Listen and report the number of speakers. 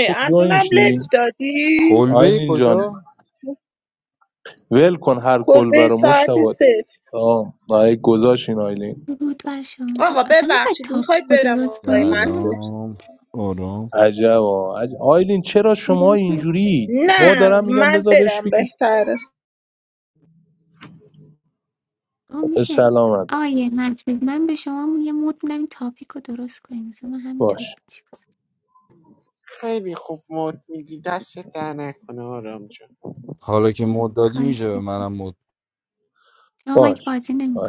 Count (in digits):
5